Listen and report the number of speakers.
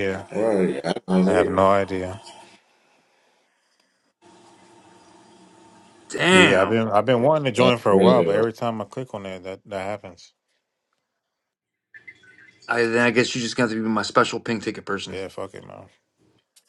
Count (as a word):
three